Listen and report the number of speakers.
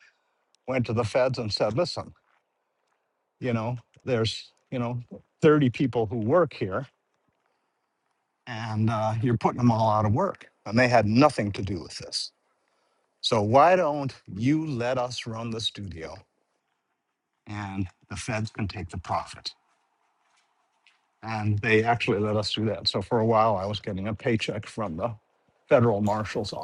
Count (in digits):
1